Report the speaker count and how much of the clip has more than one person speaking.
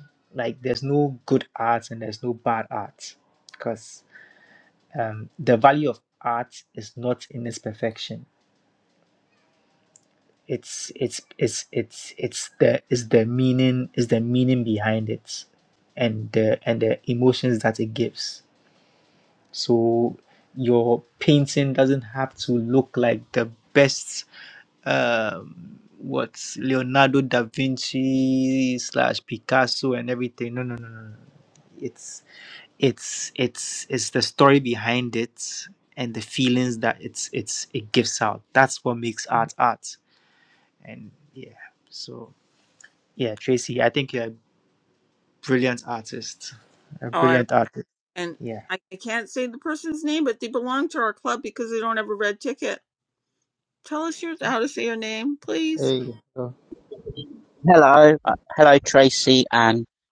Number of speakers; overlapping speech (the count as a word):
three, about 1%